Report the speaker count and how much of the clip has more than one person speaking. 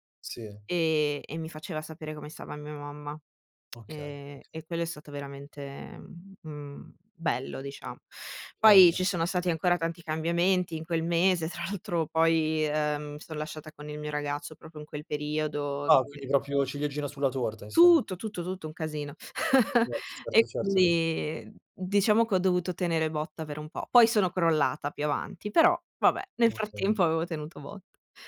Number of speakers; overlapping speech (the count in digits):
2, about 6%